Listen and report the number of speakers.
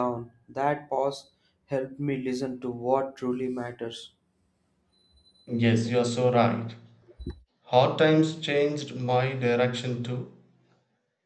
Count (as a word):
two